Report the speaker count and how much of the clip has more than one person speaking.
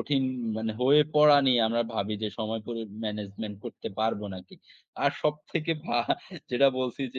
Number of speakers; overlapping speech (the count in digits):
1, no overlap